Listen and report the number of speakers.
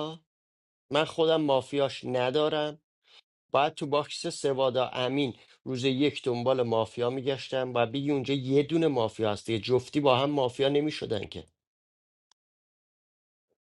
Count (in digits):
1